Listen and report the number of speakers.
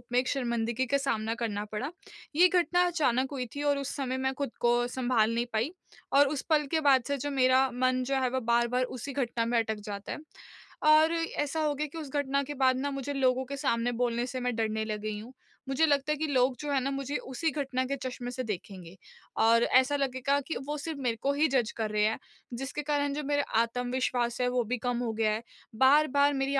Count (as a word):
one